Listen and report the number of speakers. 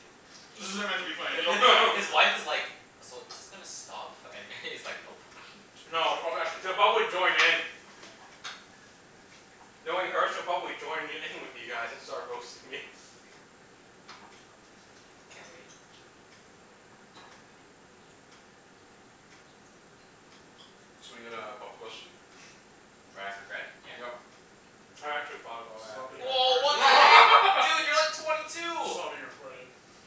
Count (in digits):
4